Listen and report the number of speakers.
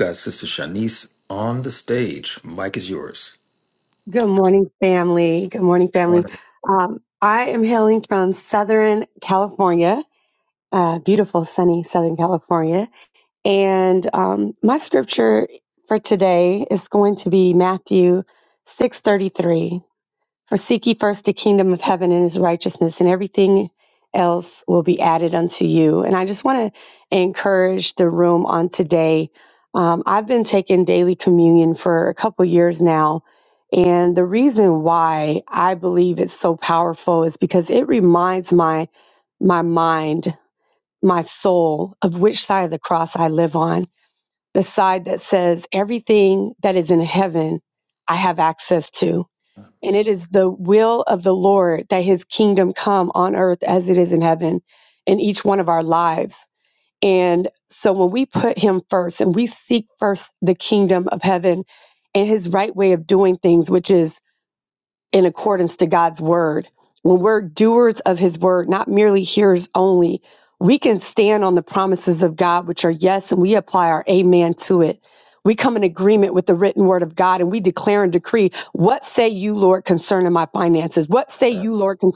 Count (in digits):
2